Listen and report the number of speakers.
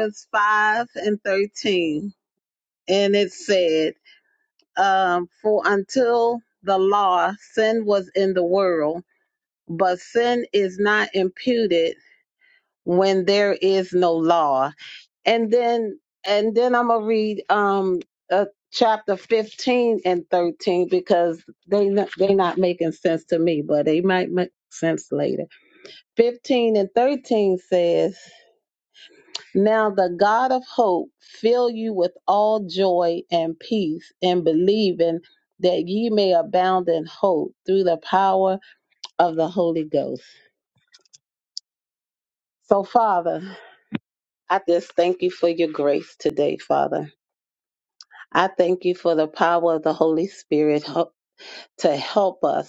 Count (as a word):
one